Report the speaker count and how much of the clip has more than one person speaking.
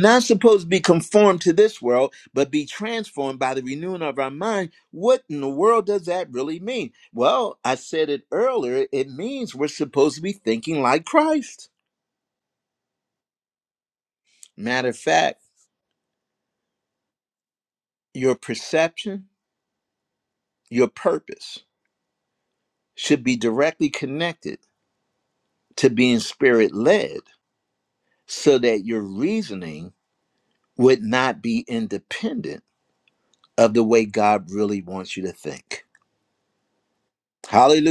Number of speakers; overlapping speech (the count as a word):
one, no overlap